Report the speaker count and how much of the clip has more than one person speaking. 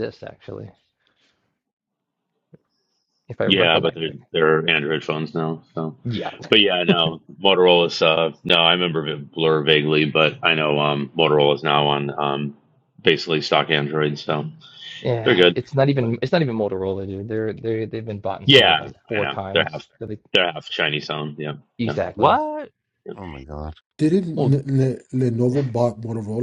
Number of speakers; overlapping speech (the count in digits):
4, about 10%